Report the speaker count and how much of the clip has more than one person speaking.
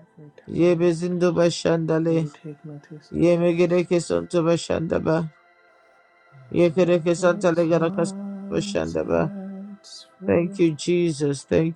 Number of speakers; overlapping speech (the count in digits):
1, no overlap